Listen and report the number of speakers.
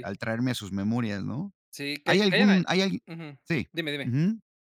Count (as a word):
two